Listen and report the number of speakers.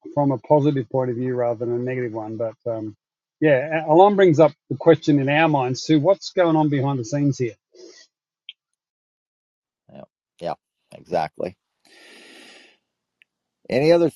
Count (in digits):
2